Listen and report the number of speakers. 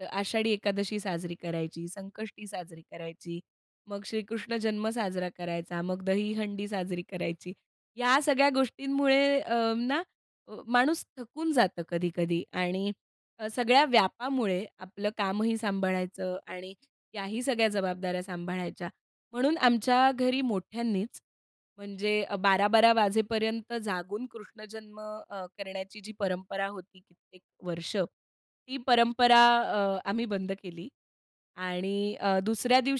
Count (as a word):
one